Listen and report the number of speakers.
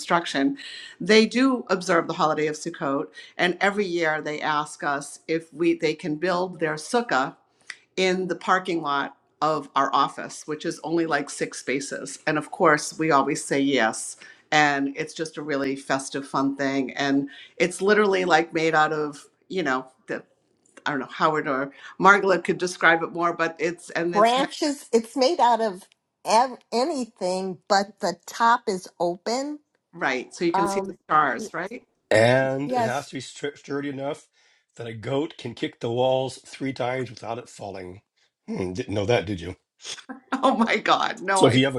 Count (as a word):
three